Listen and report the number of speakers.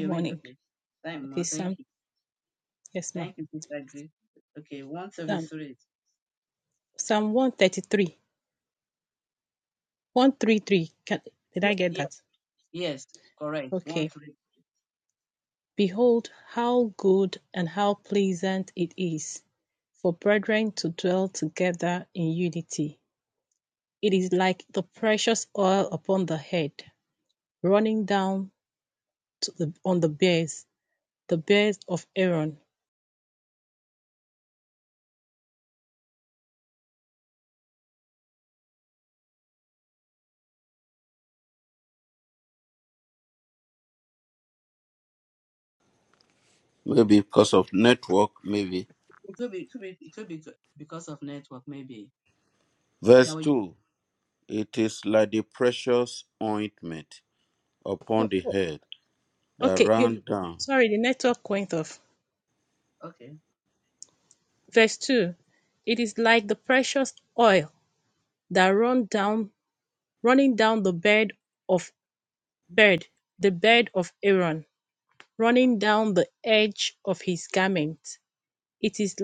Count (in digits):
3